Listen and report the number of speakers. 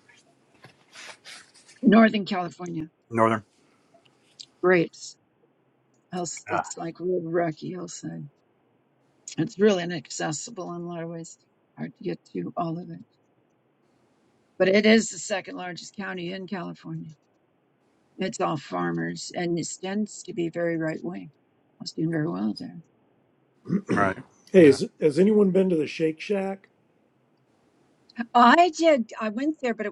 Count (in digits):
3